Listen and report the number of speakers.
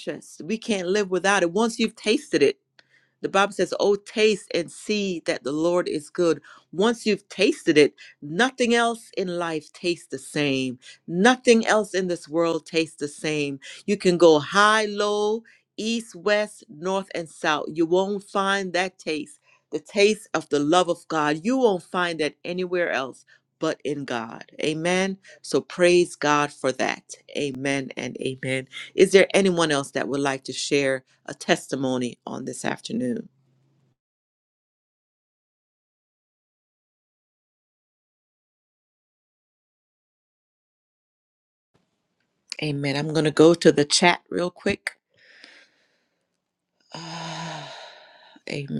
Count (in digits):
1